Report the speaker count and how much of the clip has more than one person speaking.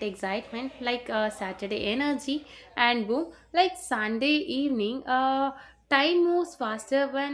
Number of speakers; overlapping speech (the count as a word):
one, no overlap